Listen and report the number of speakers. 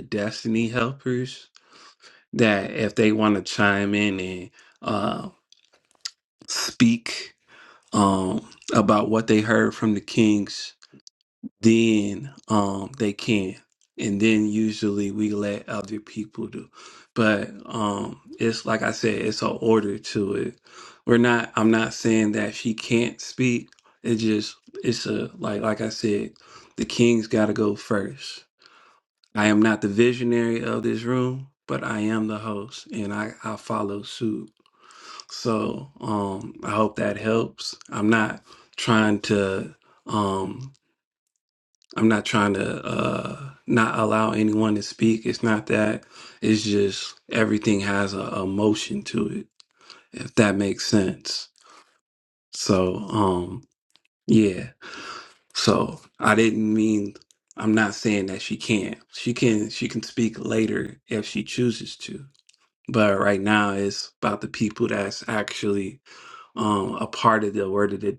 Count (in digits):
1